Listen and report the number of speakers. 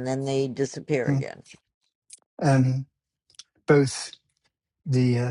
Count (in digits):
2